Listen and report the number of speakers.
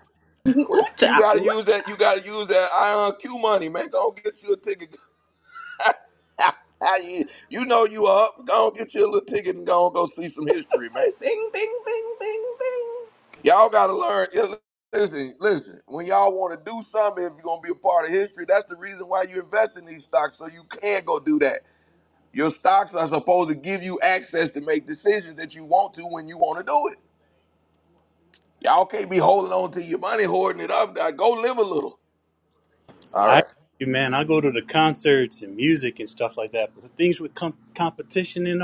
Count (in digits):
3